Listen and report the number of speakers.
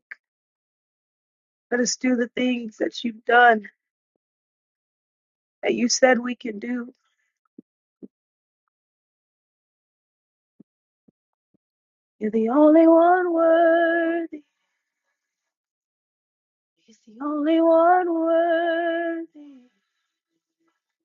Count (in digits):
1